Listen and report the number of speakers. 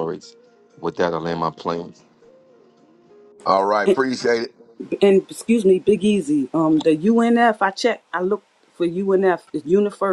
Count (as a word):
three